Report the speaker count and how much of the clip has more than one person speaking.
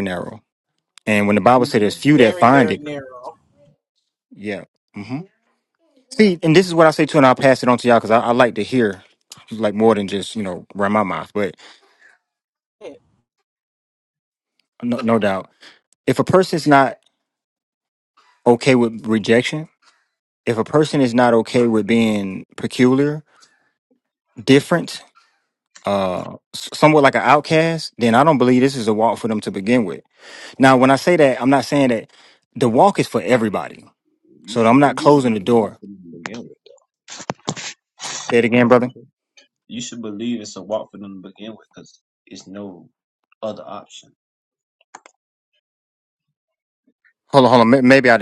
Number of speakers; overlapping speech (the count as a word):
three, about 5%